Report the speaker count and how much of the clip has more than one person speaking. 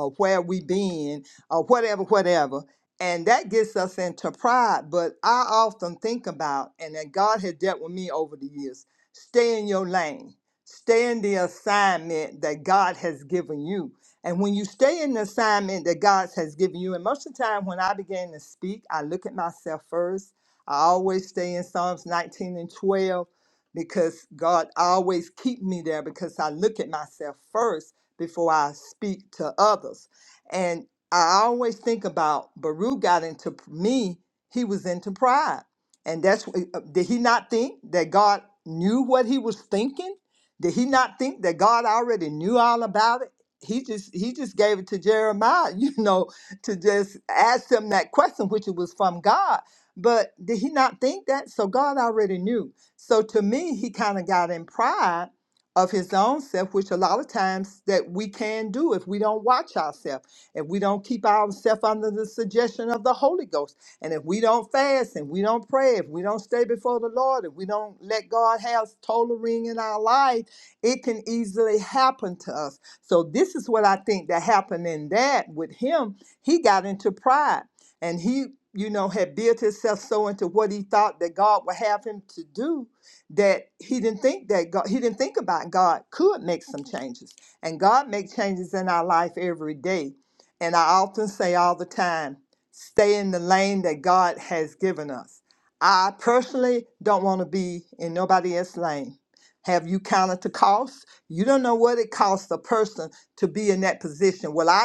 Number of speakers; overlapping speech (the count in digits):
1, no overlap